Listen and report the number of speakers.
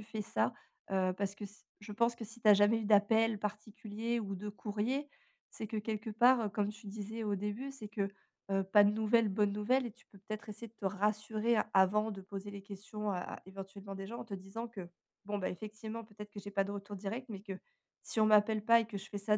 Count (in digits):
1